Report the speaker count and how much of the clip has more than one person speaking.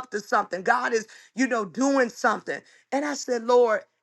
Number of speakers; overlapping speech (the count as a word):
one, no overlap